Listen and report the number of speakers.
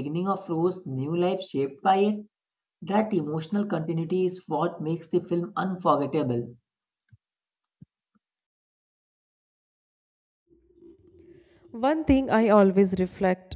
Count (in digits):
2